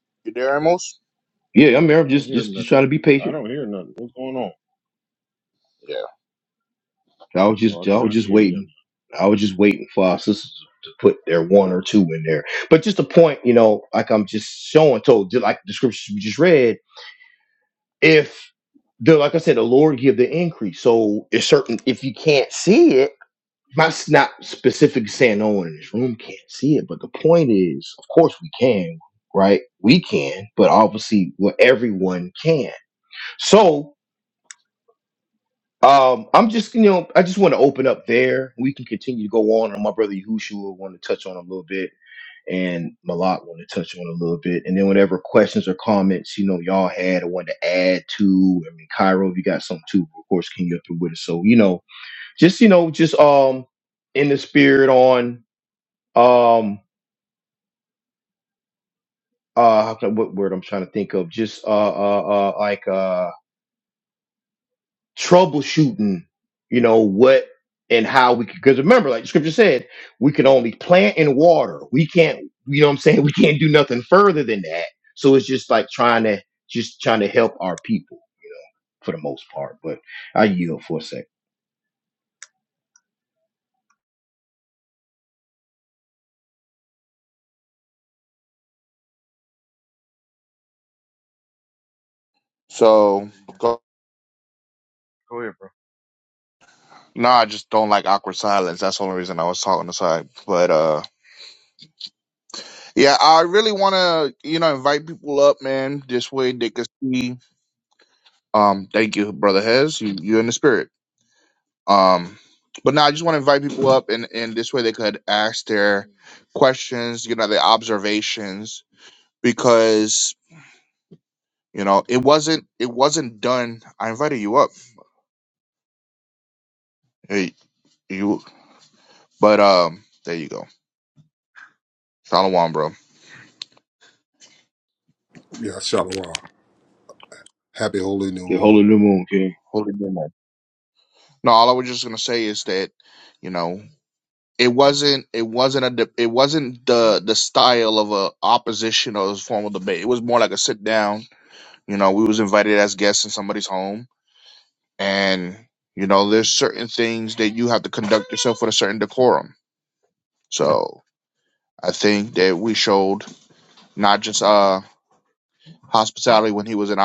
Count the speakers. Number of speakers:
4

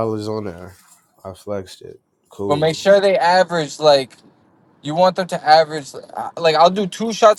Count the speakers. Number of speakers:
2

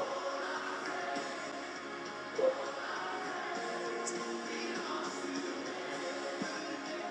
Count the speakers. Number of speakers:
0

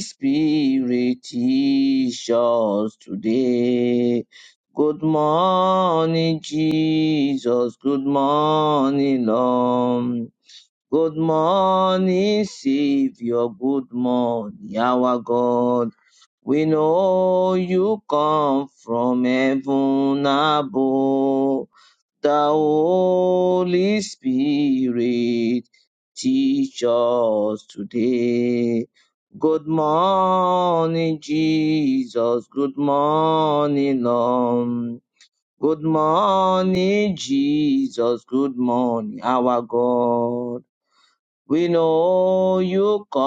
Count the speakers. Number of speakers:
1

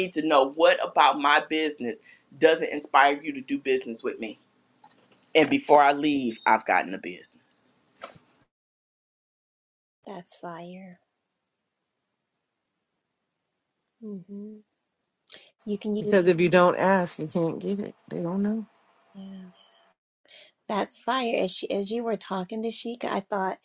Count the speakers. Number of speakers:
3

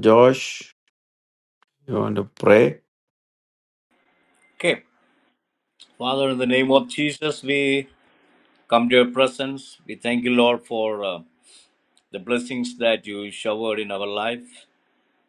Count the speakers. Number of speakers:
2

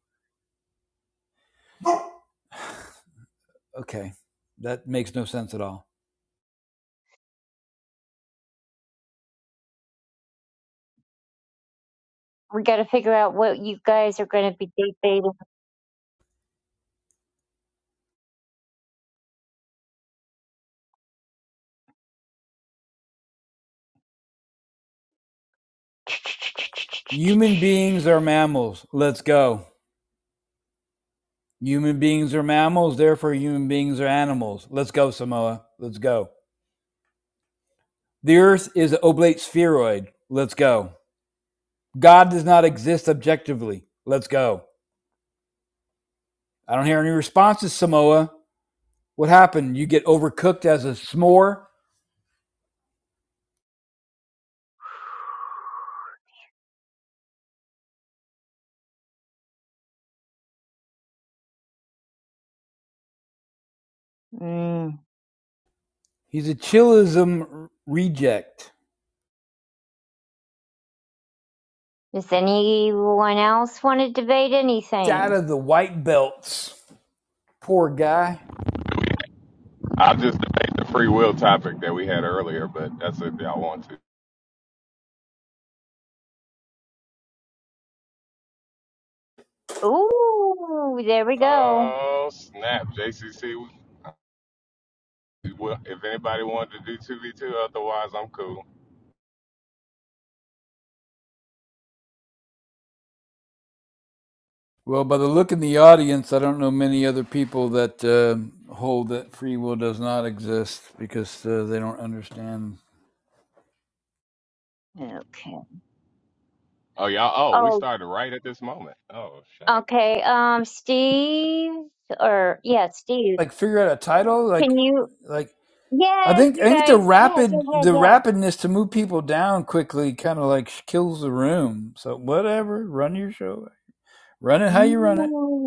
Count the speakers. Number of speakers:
3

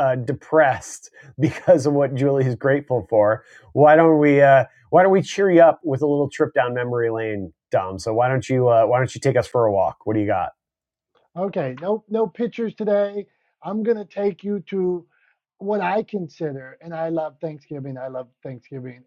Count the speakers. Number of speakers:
2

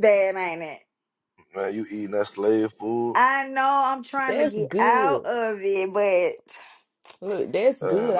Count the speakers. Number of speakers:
3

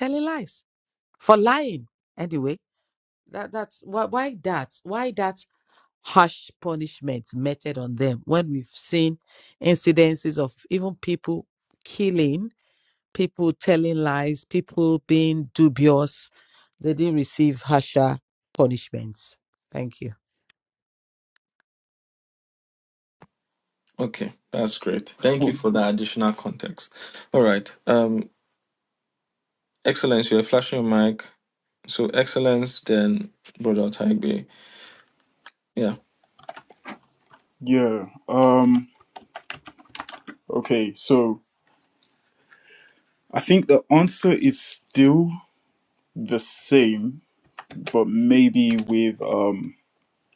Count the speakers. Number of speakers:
3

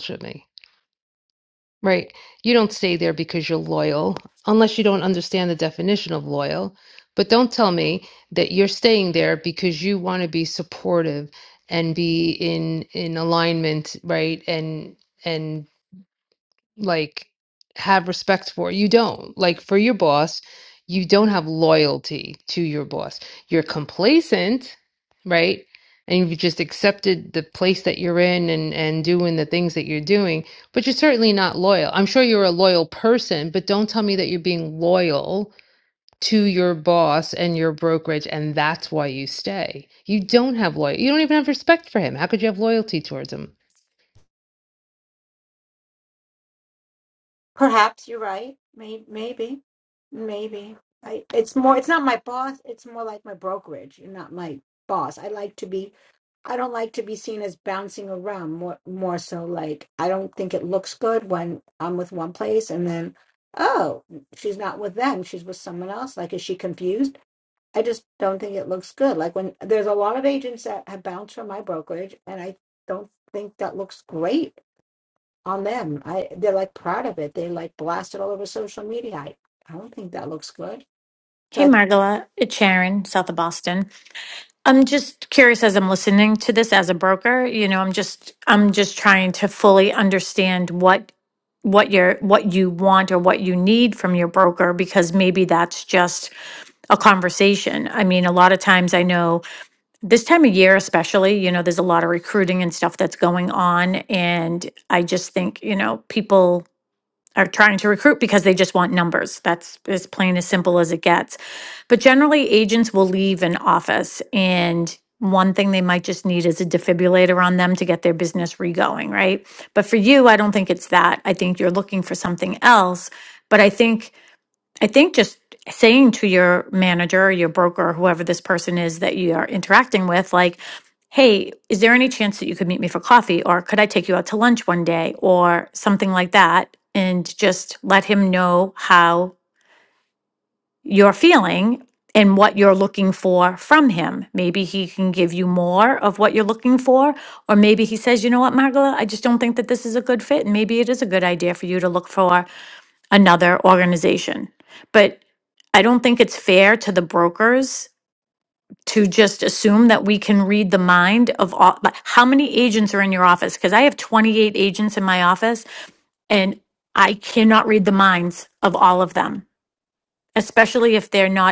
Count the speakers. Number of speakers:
3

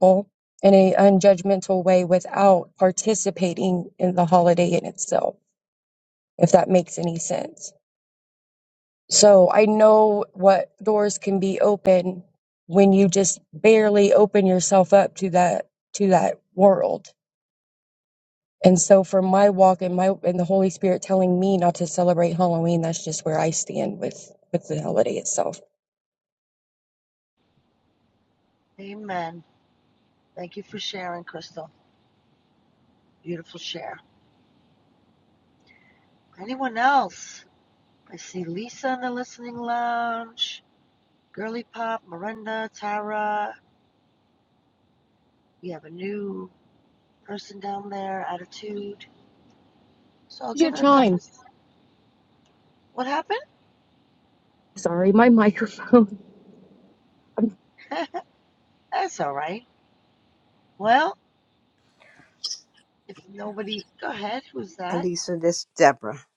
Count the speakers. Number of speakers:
3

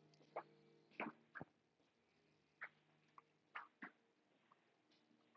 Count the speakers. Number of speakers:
0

